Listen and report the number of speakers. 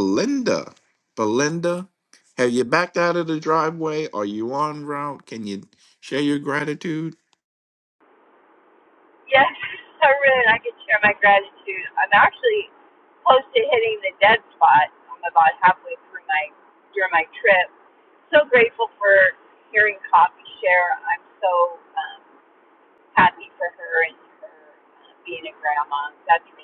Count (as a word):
two